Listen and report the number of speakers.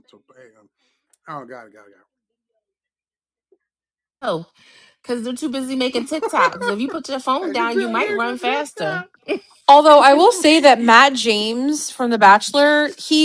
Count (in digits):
3